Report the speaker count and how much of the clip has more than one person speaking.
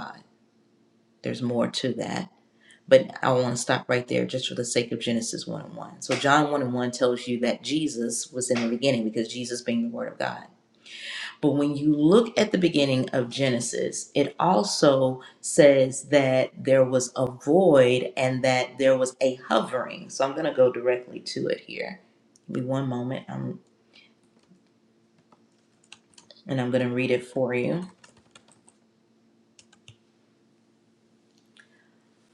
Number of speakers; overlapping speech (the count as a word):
one, no overlap